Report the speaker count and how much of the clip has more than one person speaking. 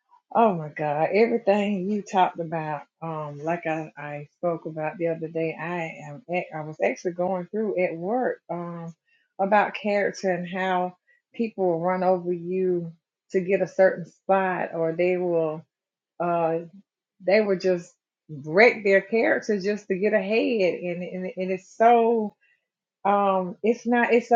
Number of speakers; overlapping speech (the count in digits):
1, no overlap